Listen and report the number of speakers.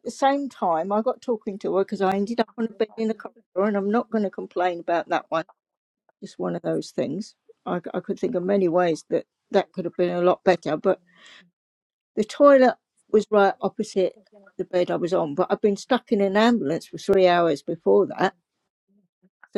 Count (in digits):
1